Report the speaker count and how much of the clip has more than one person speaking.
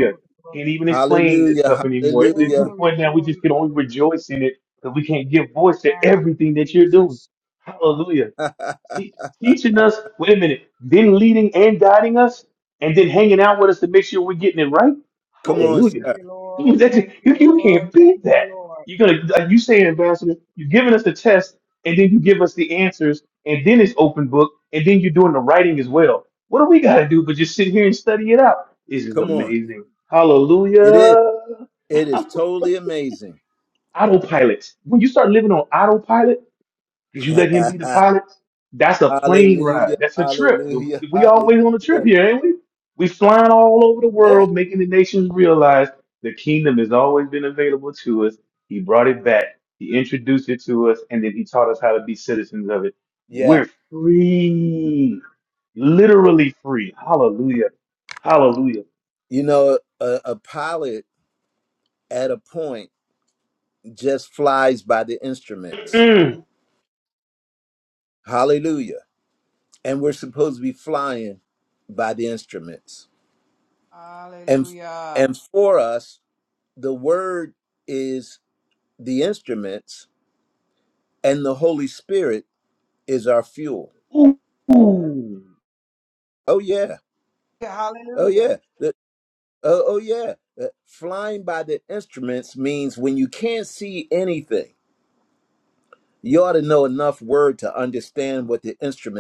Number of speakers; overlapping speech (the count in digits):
3, about 11%